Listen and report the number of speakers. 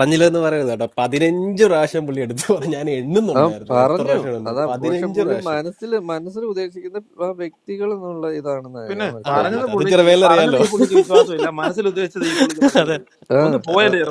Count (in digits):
3